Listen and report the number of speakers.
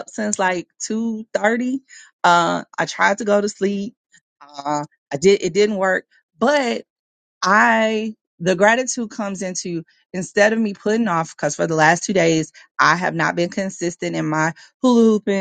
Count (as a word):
one